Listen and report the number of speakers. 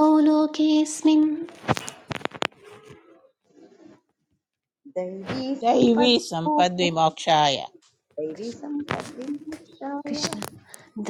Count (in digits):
3